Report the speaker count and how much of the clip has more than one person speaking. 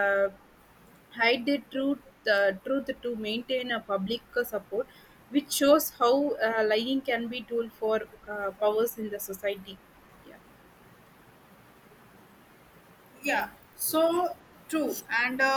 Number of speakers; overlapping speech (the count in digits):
2, about 1%